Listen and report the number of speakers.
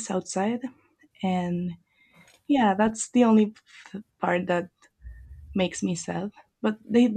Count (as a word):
one